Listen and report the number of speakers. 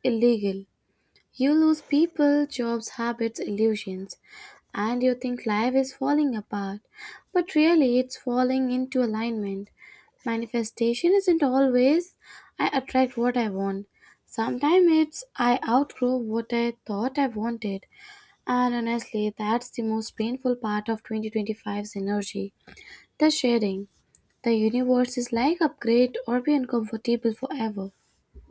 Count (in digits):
1